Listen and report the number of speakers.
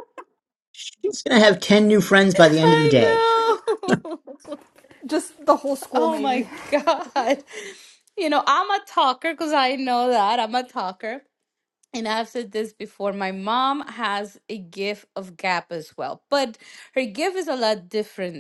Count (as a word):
three